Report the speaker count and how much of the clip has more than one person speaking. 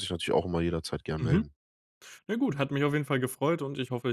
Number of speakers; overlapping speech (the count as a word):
two, about 6%